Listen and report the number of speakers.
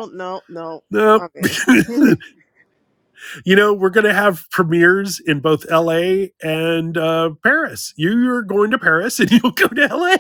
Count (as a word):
two